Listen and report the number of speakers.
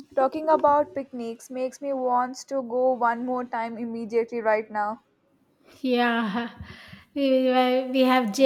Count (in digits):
2